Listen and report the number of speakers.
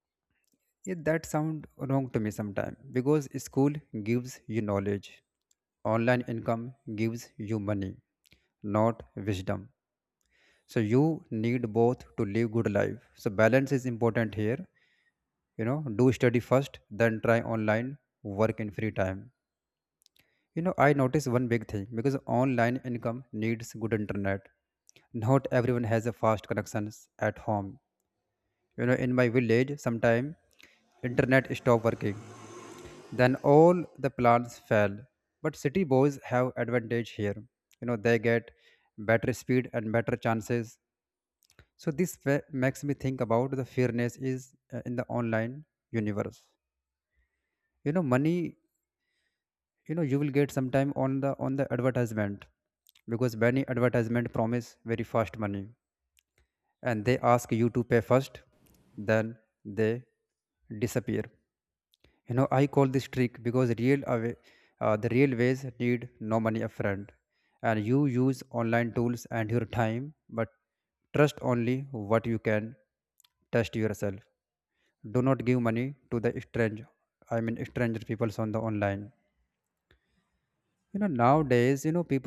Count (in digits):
1